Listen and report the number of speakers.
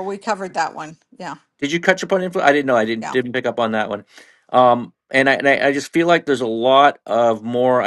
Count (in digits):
2